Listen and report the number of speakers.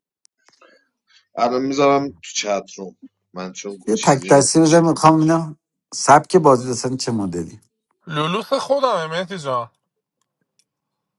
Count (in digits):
3